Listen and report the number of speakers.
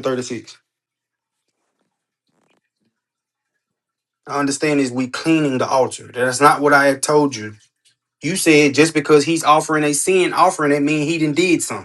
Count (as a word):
one